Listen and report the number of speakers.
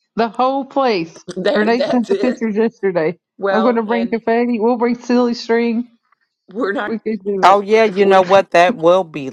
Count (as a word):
three